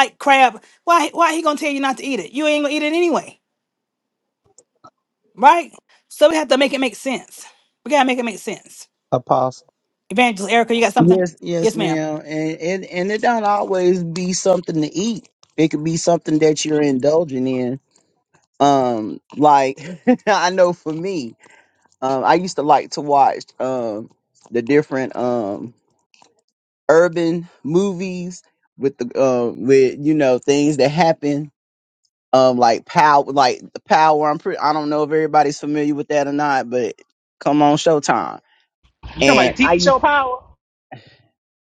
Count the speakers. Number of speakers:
three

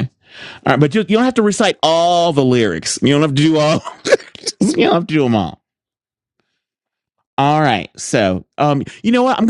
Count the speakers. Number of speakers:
one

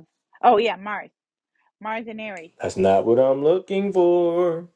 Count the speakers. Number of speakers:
two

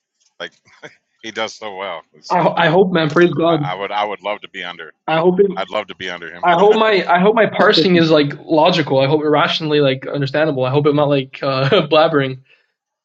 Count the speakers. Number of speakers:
two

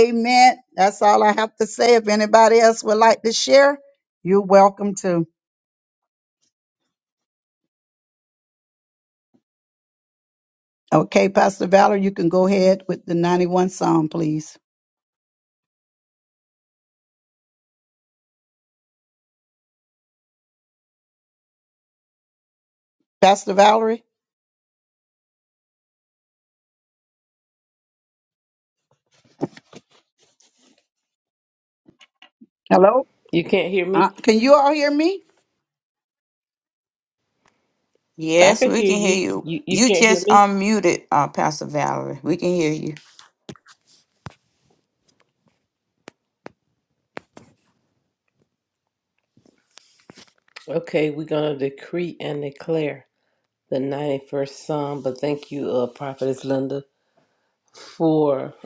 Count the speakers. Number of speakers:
three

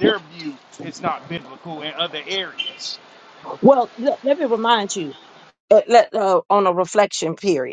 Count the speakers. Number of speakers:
two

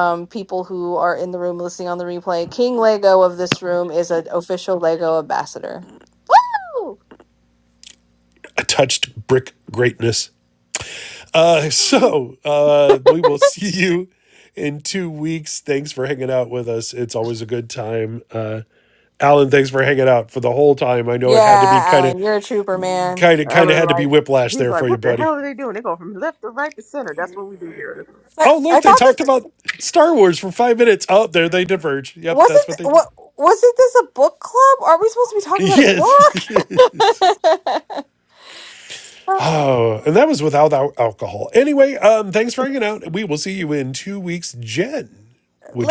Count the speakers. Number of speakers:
three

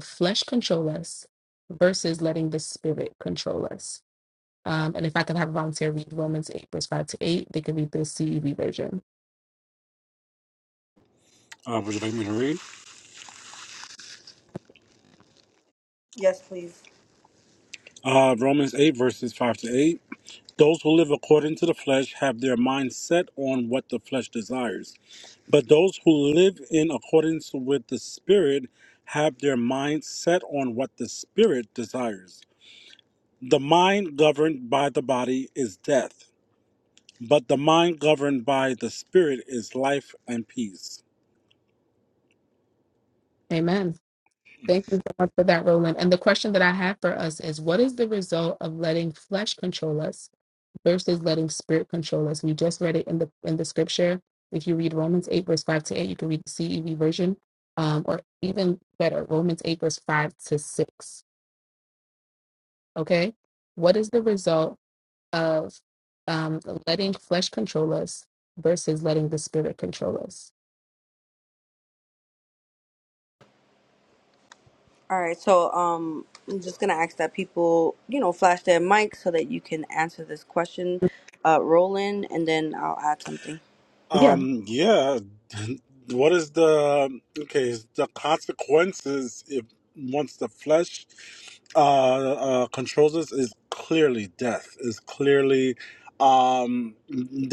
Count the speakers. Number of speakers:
three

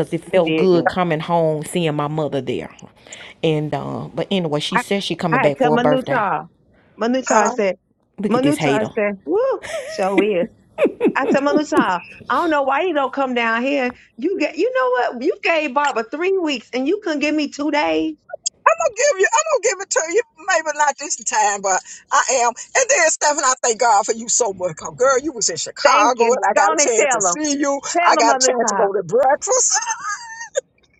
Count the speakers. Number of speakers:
three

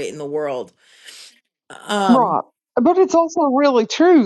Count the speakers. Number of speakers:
two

